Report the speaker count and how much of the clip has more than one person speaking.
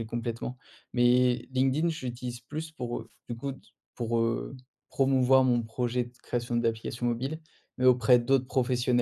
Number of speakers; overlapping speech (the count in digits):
1, no overlap